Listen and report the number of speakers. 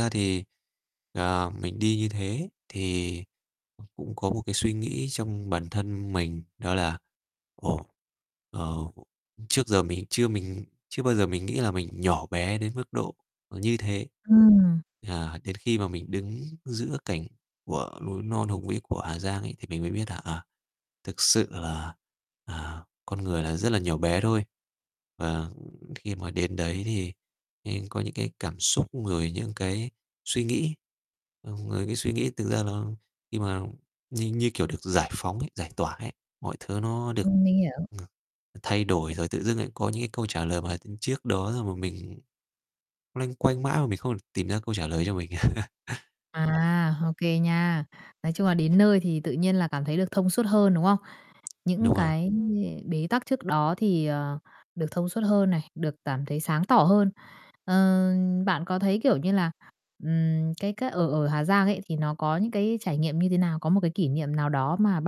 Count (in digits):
2